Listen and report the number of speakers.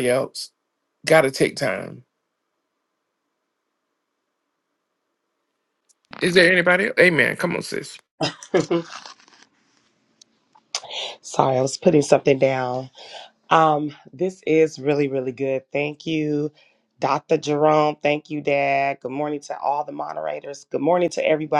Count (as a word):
two